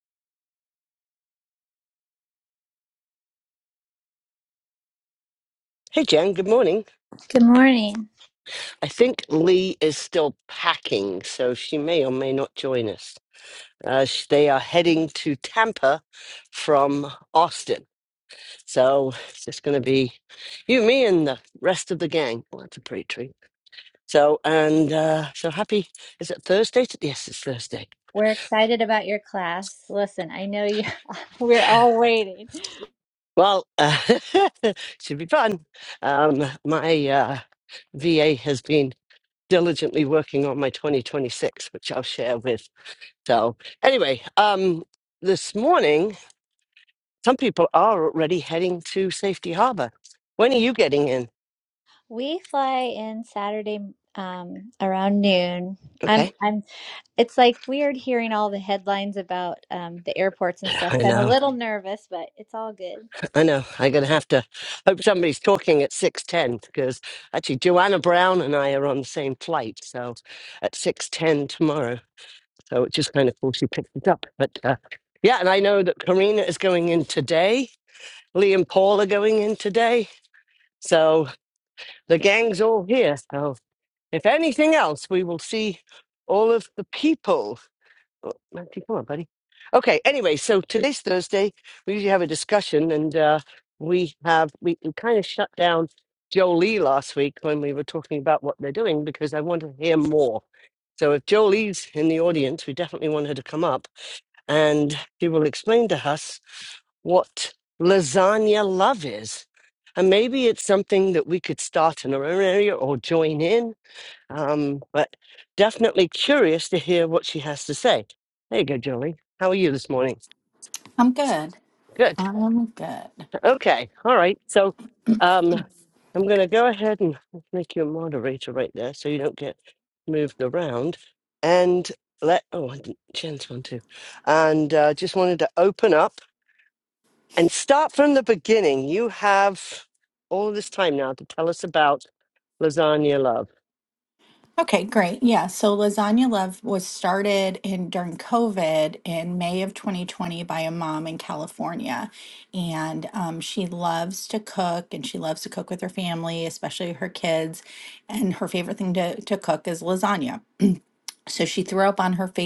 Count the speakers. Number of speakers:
3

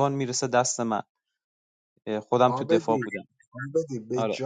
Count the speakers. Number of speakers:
2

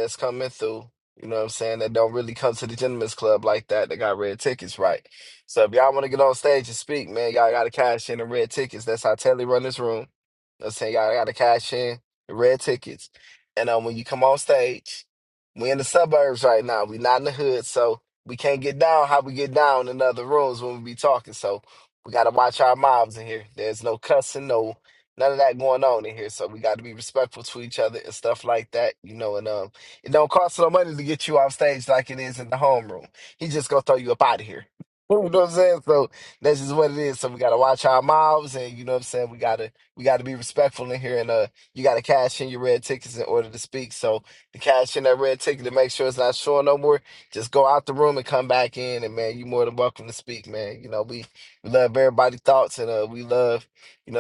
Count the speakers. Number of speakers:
1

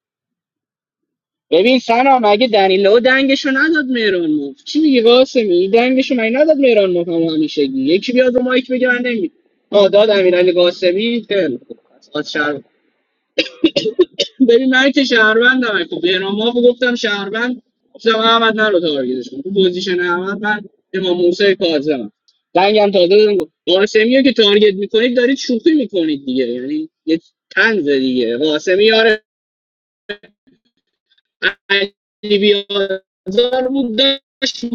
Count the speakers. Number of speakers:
1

